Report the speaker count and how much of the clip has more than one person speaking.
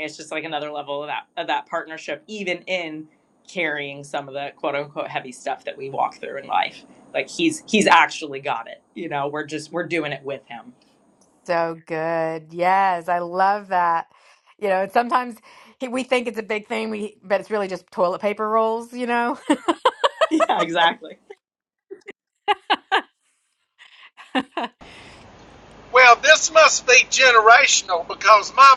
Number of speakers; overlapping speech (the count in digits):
3, no overlap